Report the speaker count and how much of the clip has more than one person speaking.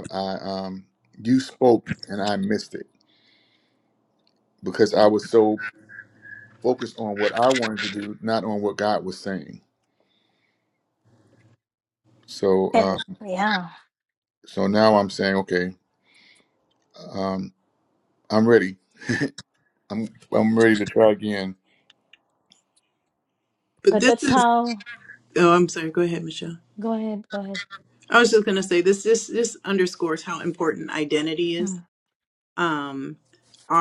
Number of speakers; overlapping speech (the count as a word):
three, about 2%